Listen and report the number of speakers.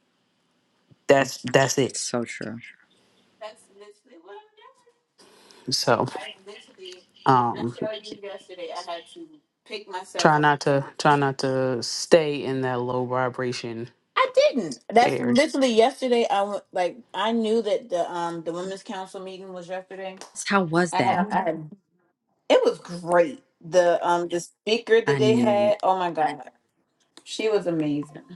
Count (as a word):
three